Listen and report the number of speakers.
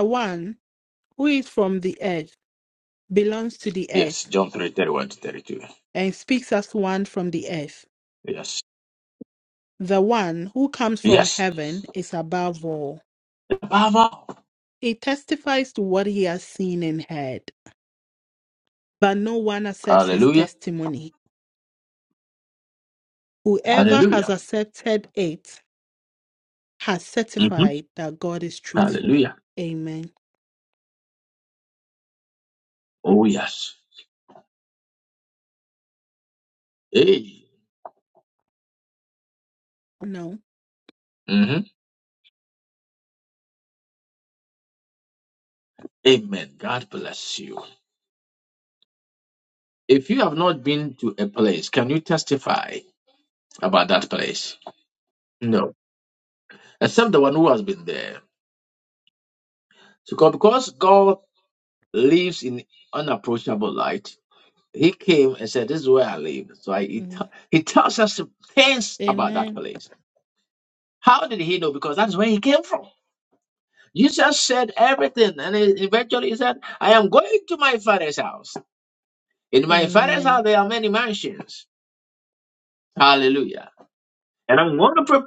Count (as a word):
two